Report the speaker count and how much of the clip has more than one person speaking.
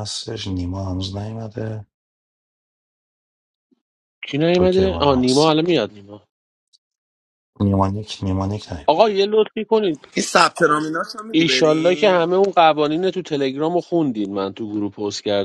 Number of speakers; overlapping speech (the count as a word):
three, about 12%